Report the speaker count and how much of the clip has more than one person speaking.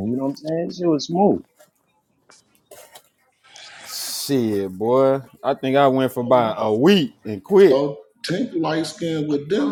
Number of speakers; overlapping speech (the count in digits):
3, about 4%